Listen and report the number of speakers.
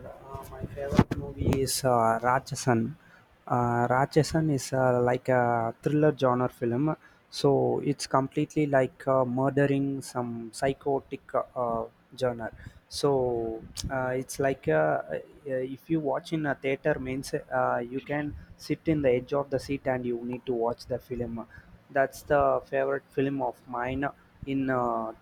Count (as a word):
one